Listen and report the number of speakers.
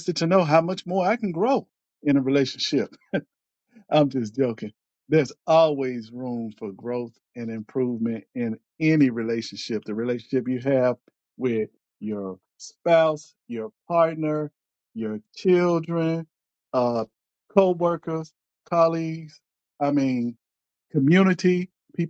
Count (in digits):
1